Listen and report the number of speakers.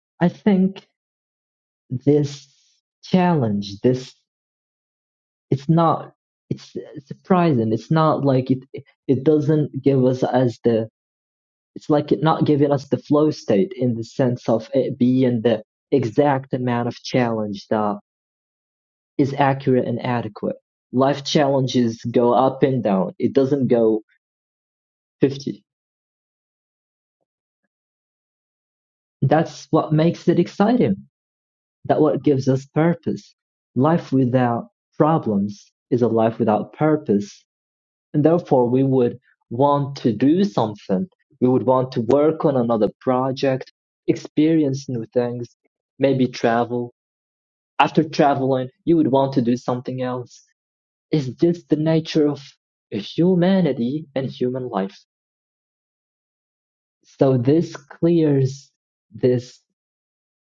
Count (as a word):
one